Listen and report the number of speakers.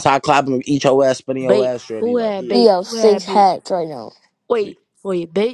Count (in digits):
3